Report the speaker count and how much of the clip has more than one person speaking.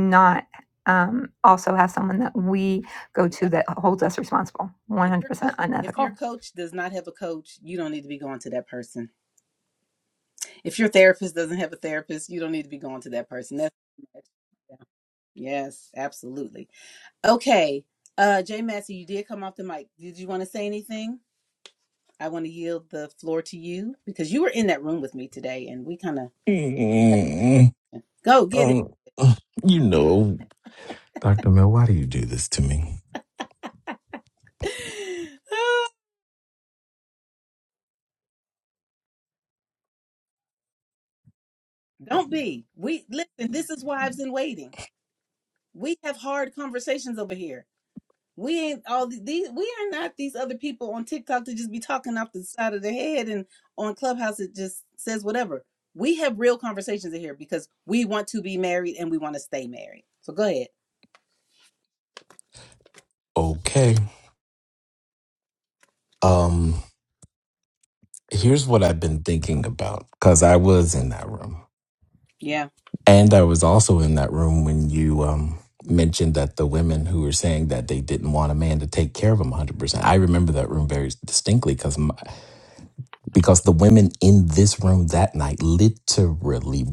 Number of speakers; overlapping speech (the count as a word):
three, about 2%